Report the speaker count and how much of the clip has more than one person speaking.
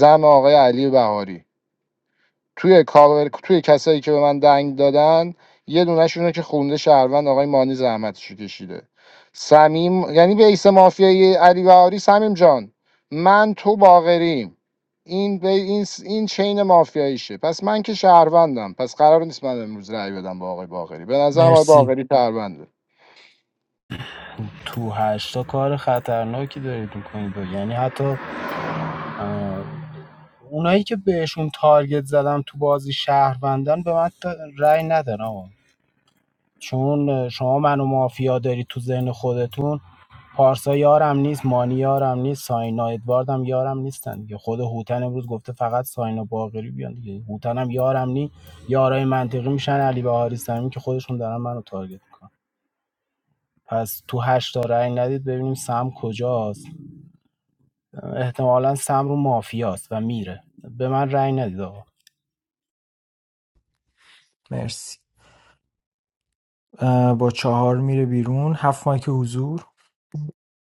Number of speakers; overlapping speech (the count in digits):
3, about 1%